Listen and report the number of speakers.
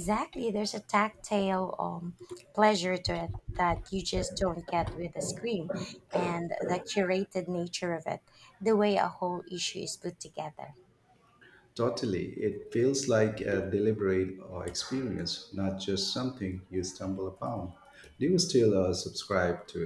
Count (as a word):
two